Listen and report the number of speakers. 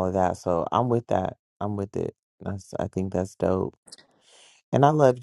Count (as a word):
one